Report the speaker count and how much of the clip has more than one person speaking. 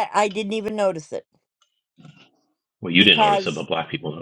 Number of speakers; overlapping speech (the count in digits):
2, about 11%